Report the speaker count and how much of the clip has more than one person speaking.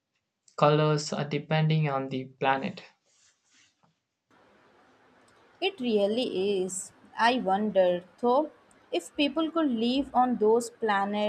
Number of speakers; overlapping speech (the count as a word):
two, no overlap